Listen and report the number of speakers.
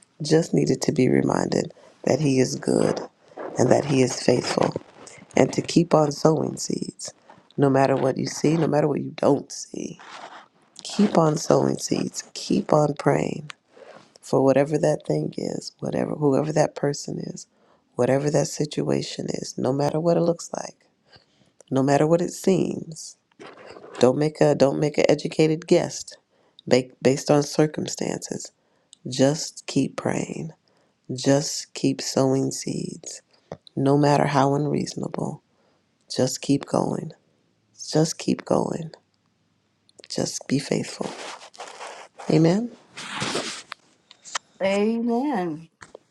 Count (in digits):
2